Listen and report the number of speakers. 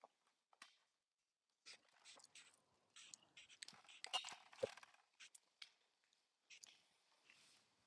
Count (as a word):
zero